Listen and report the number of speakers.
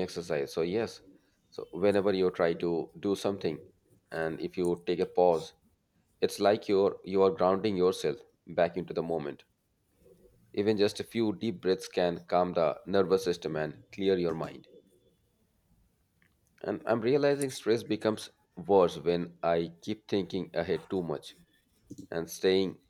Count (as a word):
one